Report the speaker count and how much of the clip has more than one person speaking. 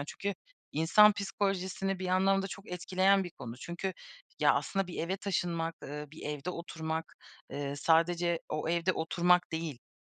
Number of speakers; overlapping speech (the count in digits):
1, no overlap